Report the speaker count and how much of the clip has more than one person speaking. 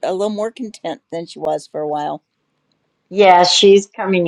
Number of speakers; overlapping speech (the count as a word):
two, no overlap